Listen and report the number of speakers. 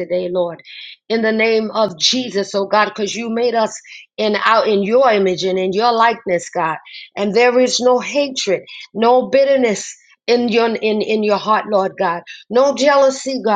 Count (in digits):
1